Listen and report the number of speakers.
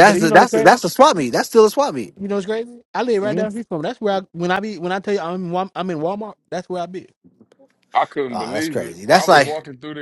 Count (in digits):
3